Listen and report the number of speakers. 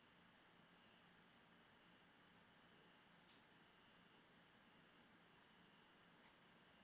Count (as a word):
zero